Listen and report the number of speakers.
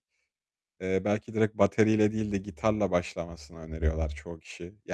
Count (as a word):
one